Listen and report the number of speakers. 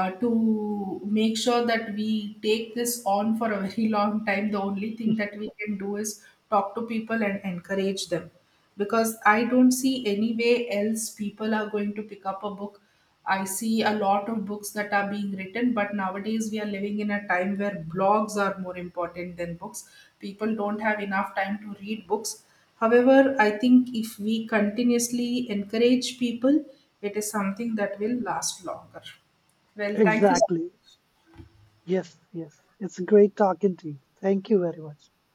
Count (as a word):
two